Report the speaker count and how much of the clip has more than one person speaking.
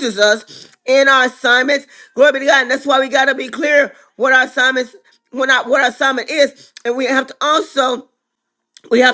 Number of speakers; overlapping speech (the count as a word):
one, no overlap